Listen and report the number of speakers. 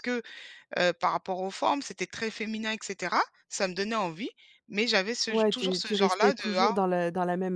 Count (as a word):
two